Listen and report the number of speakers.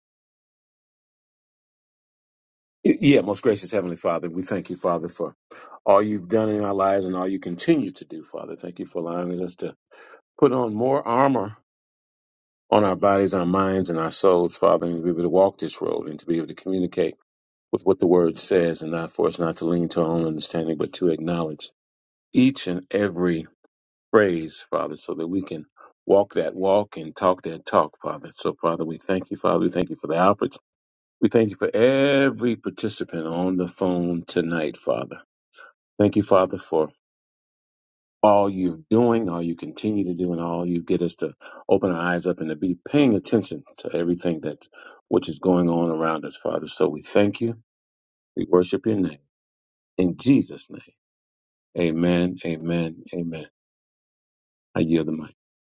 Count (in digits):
1